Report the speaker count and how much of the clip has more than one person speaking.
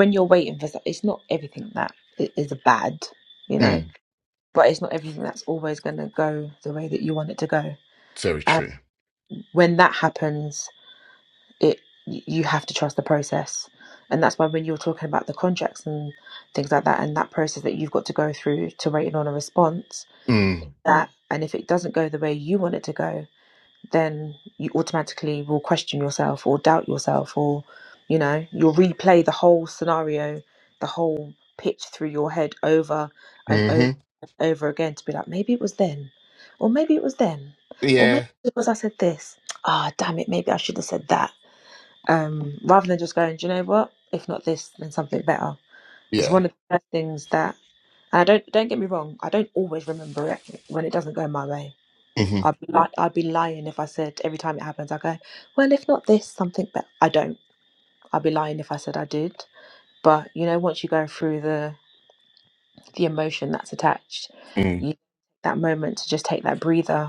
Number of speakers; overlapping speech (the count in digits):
2, about 2%